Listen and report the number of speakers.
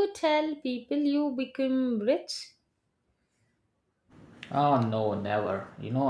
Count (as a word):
two